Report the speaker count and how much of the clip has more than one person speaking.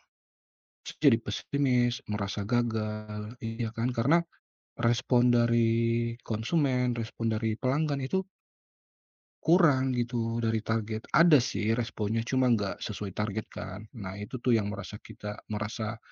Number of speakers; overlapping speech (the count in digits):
1, no overlap